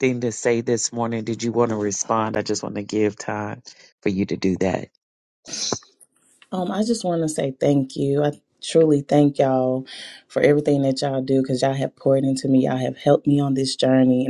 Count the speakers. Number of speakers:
two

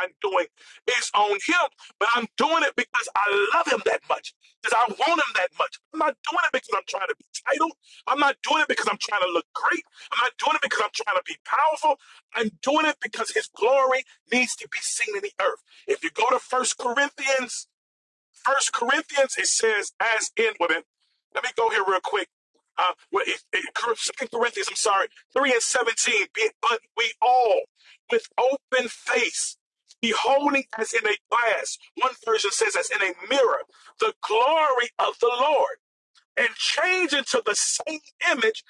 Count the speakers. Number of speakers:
one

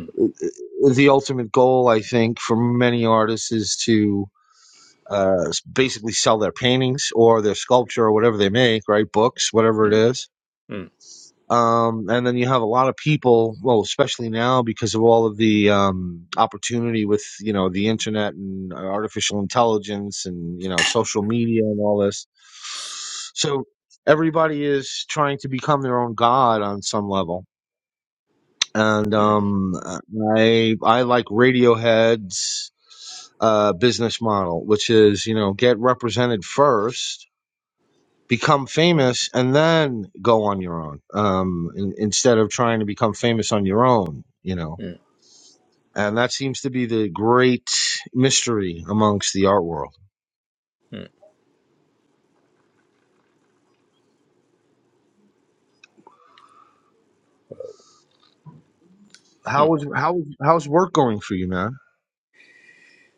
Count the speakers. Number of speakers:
two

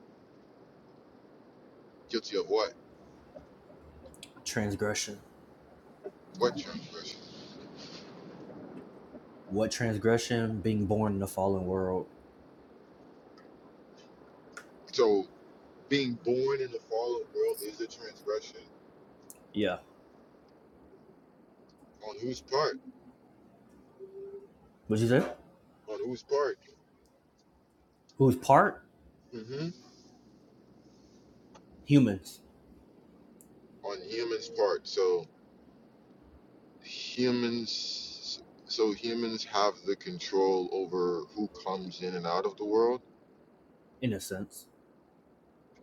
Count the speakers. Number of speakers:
two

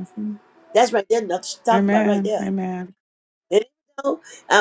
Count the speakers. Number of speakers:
two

